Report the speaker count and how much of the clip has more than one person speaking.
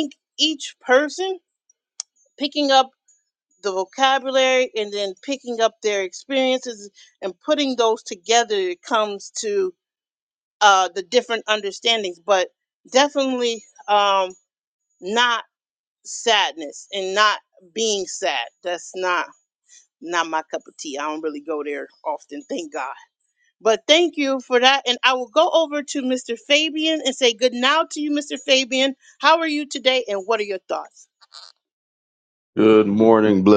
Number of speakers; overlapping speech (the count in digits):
2, no overlap